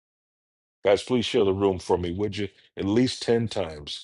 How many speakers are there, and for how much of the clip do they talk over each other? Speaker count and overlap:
one, no overlap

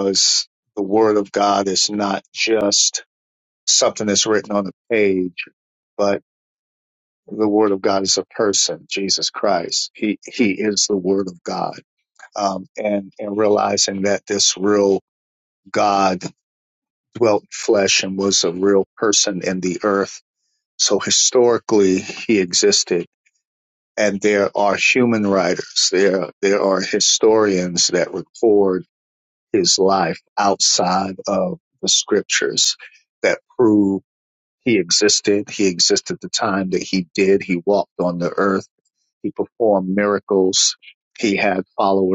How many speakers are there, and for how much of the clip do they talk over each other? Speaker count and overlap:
one, no overlap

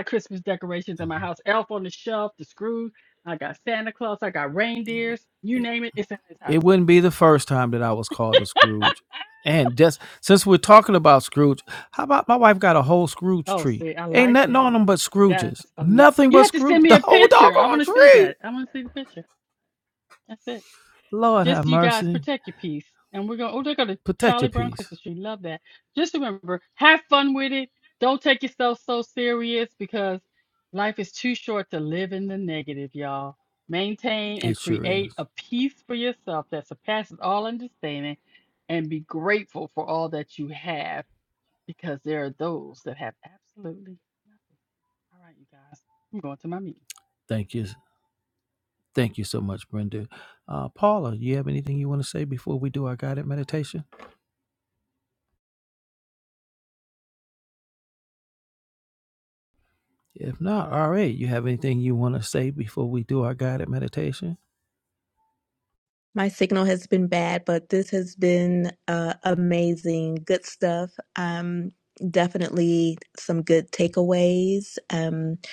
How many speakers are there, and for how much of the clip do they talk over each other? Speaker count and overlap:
three, about 8%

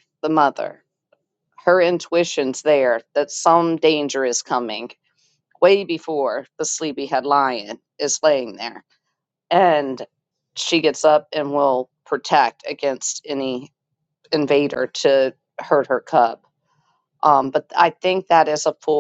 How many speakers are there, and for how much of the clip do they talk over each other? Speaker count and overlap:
one, no overlap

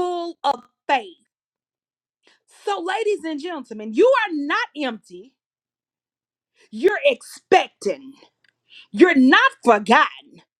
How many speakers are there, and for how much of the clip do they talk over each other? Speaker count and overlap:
one, no overlap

